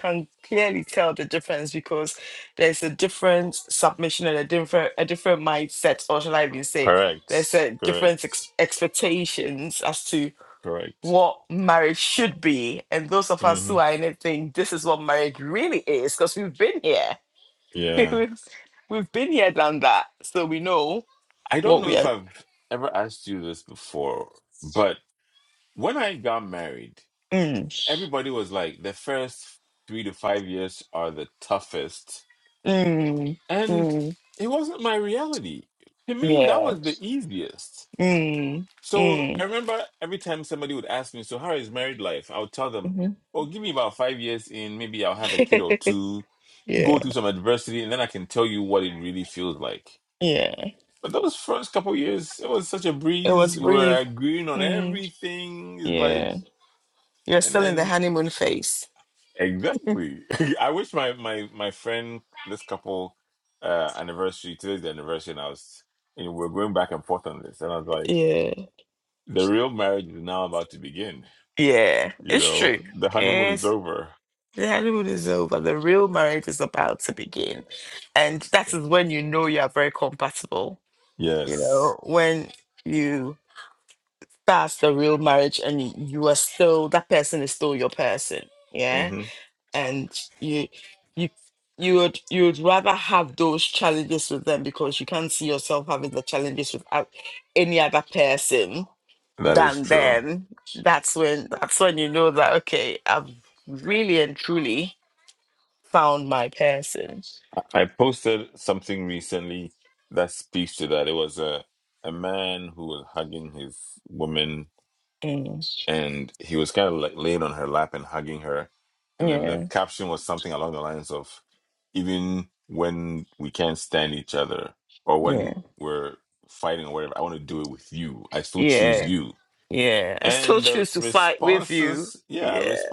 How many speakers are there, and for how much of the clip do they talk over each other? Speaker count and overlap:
2, about 8%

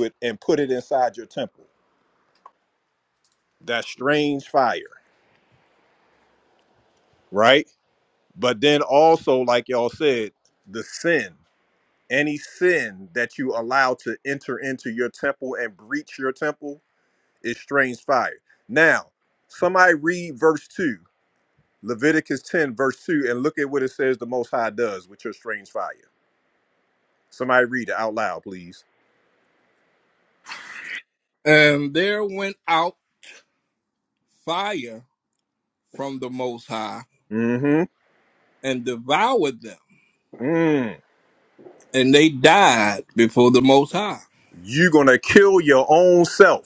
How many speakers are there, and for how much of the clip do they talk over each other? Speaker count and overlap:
2, no overlap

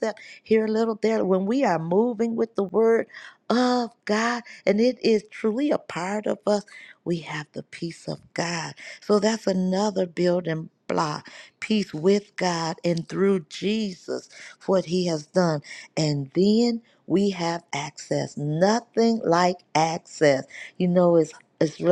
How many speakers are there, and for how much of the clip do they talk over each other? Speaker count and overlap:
1, no overlap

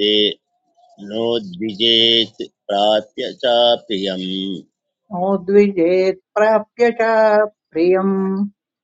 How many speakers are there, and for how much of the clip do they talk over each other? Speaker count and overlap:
2, no overlap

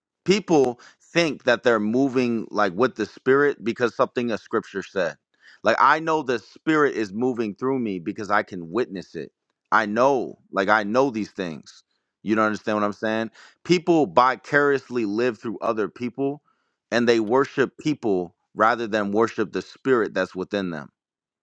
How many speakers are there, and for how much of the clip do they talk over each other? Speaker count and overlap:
1, no overlap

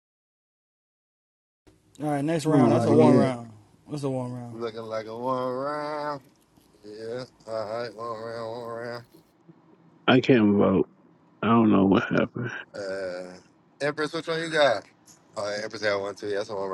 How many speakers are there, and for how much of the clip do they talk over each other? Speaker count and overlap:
3, about 5%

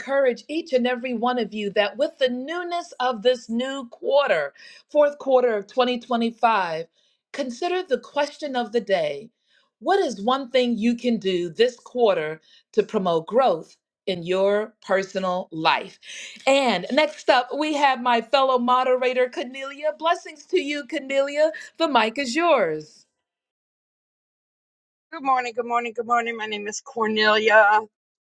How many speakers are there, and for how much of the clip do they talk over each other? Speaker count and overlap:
2, no overlap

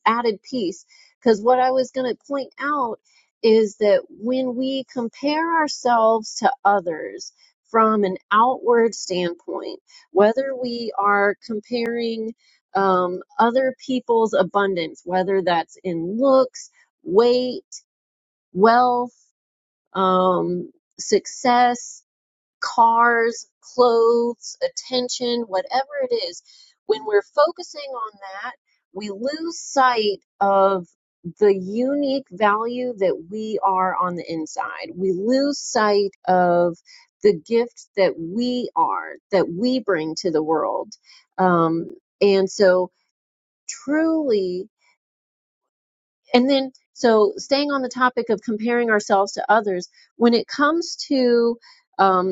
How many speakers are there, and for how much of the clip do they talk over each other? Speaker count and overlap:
1, no overlap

